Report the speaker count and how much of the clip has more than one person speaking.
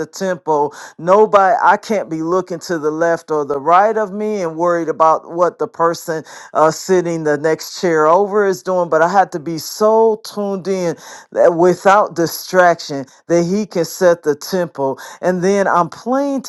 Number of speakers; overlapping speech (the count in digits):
1, no overlap